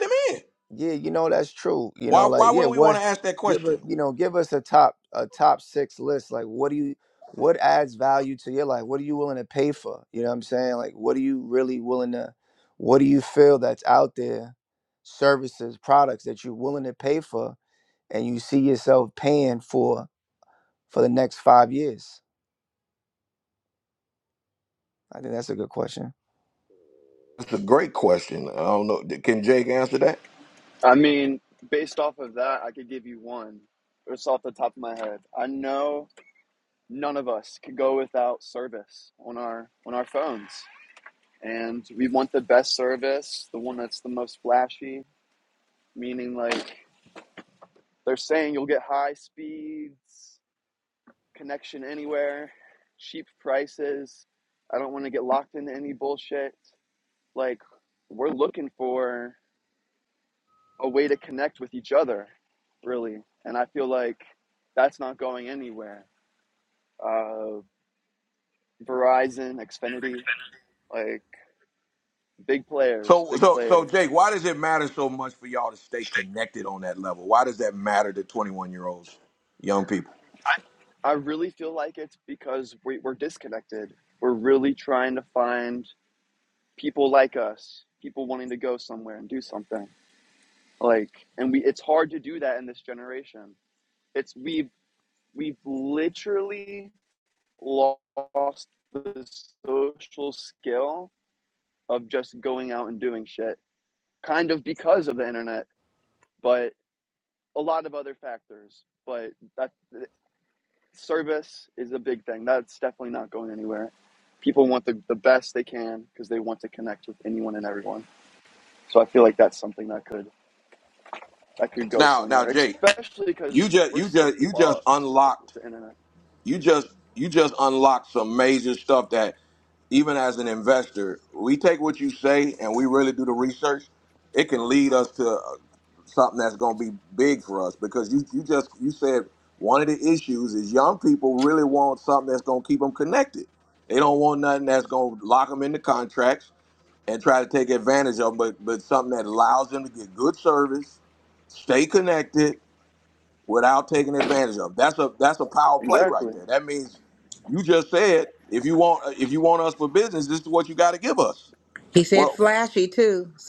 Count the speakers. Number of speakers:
4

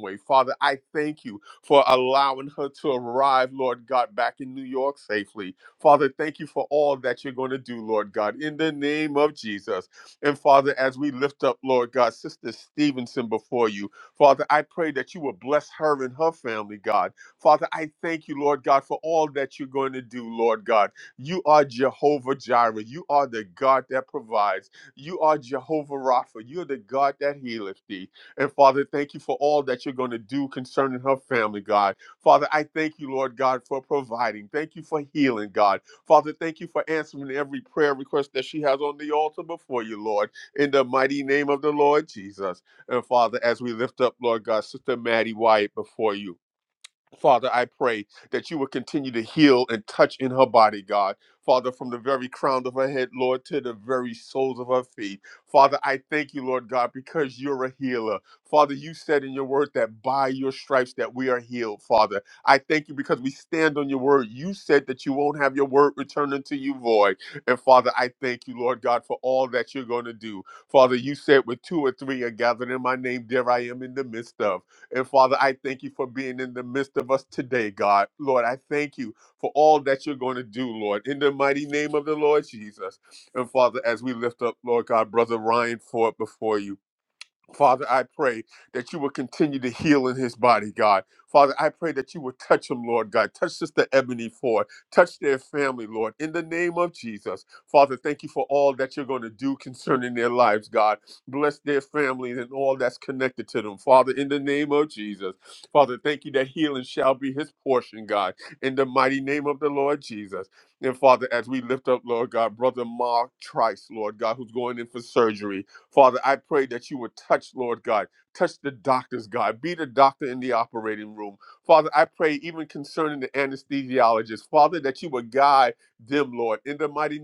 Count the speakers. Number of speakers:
1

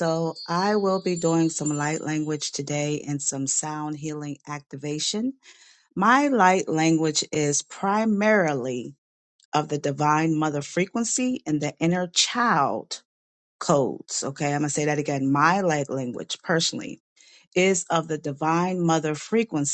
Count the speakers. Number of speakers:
1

